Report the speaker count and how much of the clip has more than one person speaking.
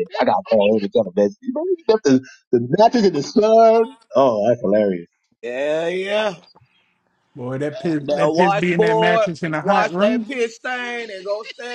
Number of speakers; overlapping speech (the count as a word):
three, about 20%